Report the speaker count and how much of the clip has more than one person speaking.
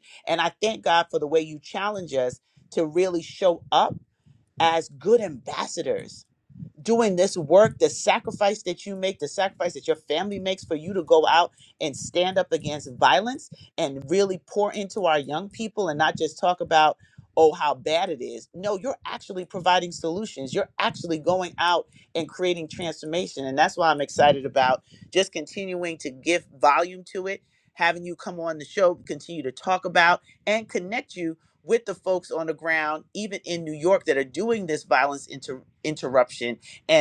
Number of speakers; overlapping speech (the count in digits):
1, no overlap